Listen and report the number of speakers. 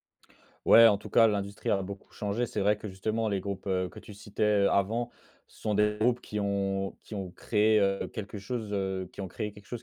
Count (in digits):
1